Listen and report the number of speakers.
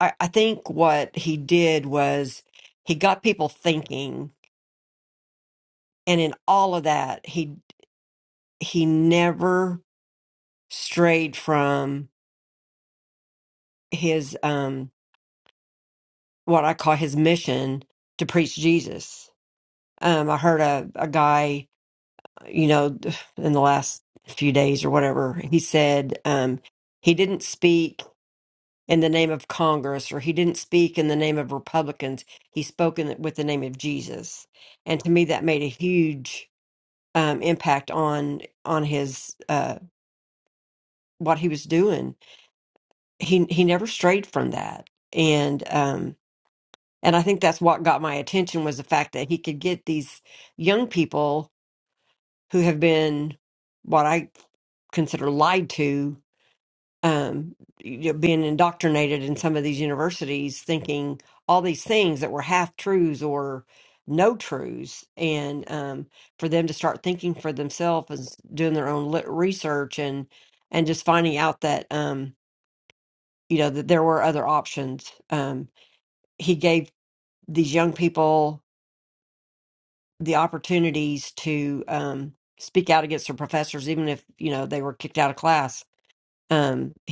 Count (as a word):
one